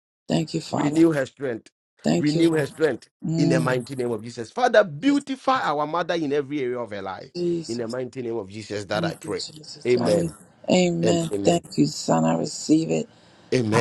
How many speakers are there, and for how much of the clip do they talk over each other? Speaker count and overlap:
2, about 21%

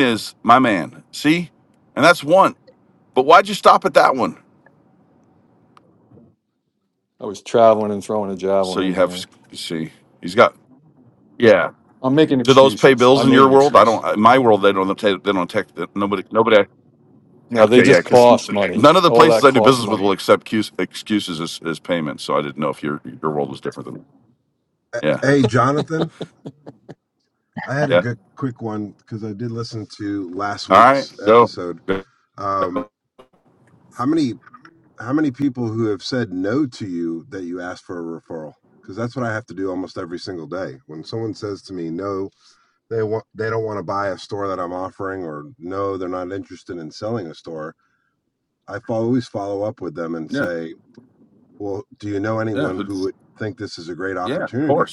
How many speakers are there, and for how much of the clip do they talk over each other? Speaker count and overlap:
3, about 11%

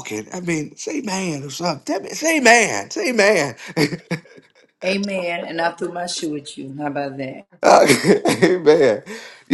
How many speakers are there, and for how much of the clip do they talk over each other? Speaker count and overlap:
2, no overlap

